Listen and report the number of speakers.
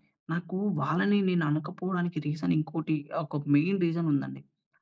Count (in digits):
1